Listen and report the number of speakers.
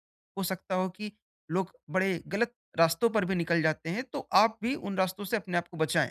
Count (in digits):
1